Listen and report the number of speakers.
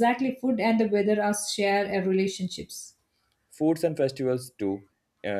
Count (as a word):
two